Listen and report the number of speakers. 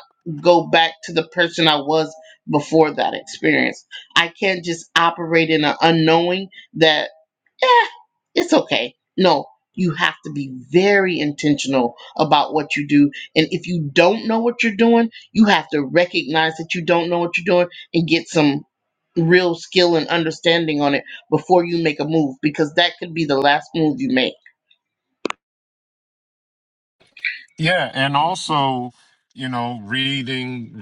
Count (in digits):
2